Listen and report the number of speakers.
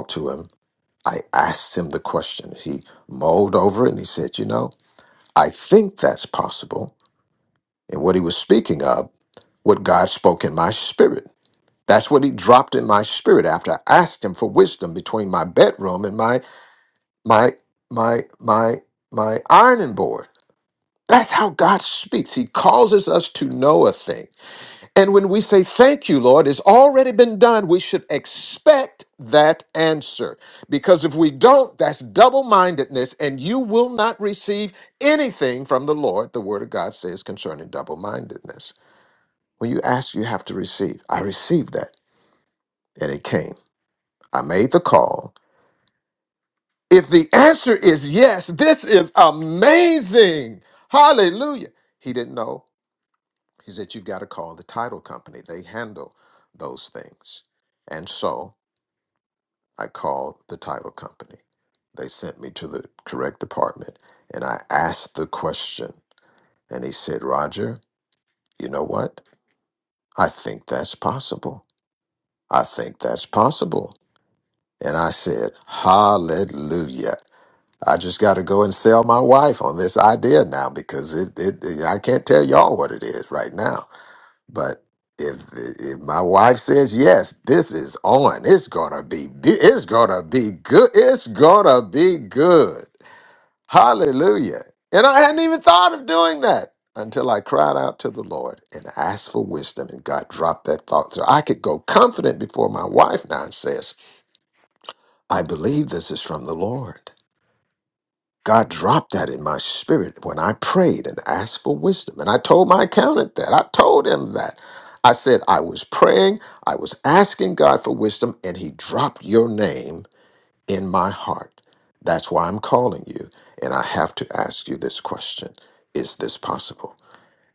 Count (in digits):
1